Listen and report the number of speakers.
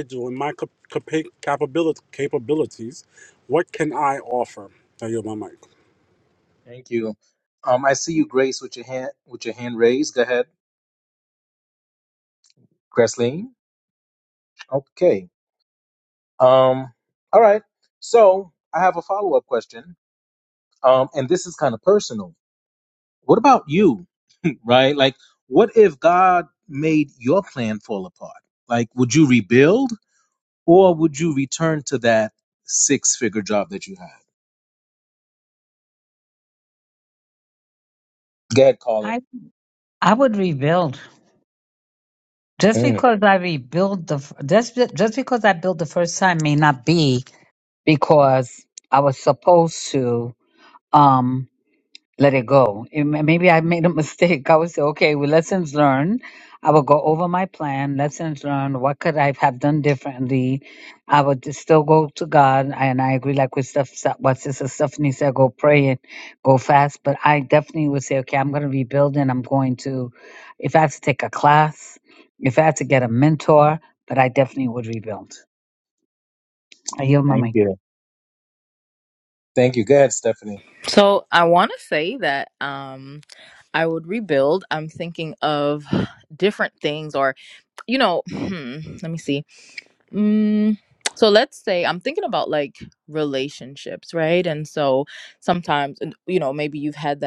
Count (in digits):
4